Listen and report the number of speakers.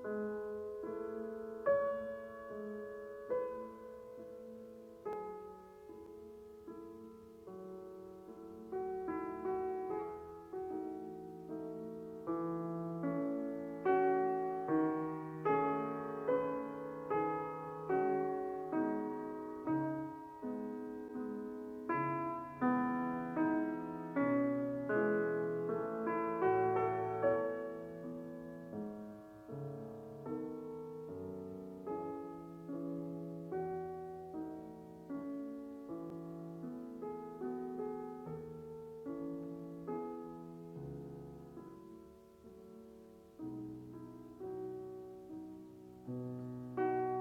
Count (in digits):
0